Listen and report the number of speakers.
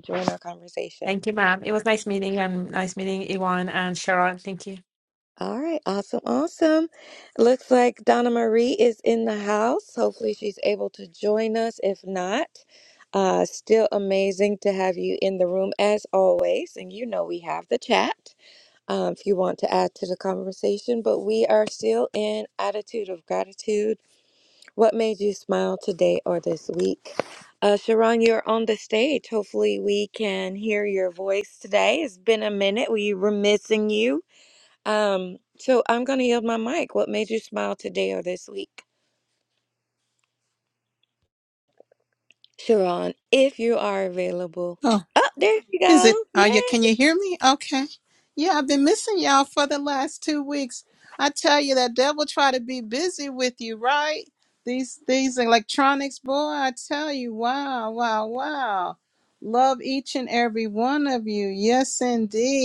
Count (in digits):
3